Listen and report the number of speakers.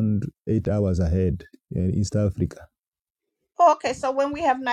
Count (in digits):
2